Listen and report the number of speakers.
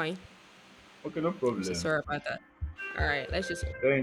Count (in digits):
2